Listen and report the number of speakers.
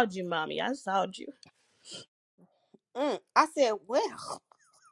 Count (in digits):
2